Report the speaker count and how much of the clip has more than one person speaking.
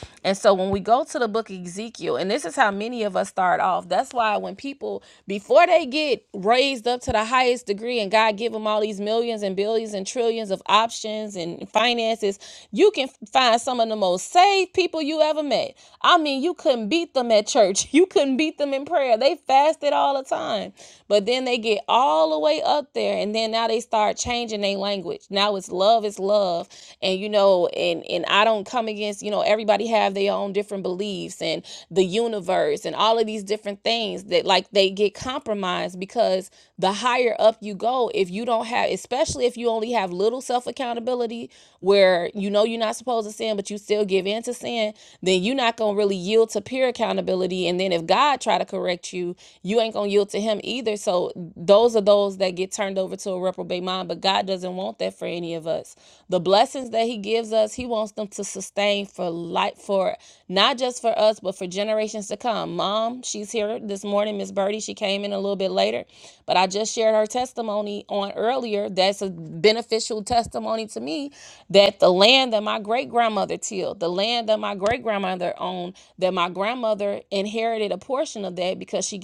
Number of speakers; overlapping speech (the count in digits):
1, no overlap